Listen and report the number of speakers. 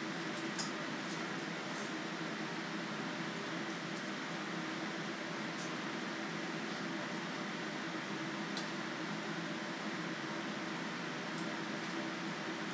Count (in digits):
0